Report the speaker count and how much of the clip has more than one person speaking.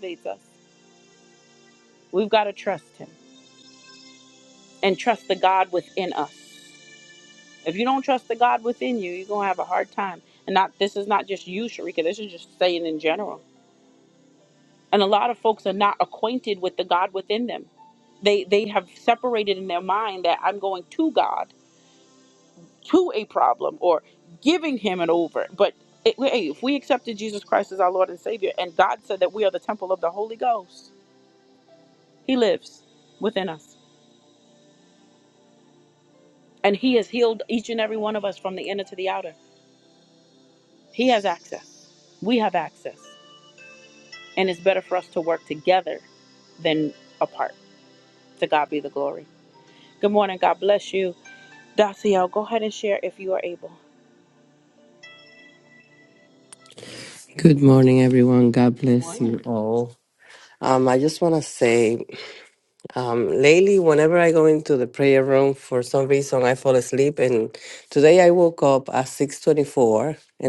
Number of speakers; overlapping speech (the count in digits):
2, no overlap